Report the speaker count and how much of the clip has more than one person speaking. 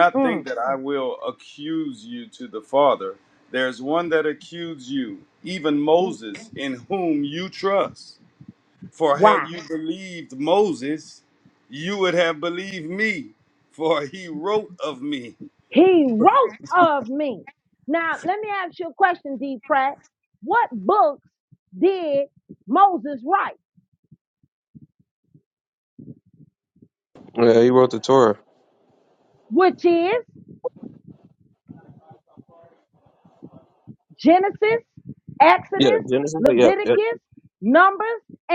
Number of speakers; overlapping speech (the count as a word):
three, about 5%